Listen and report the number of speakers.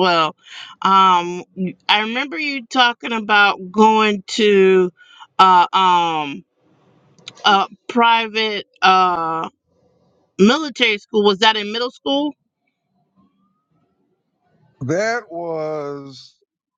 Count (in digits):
2